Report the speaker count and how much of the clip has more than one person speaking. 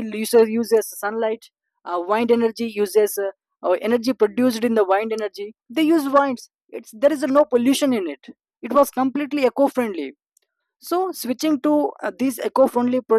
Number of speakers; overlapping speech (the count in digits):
1, no overlap